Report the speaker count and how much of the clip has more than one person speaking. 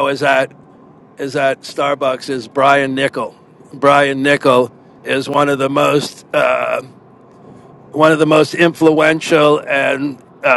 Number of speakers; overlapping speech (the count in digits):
1, no overlap